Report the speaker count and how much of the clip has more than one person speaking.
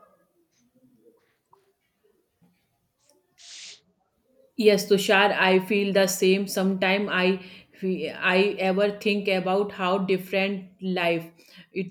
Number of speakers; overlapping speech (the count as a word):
one, no overlap